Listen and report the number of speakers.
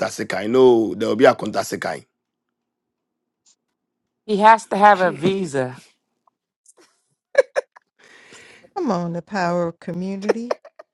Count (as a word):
three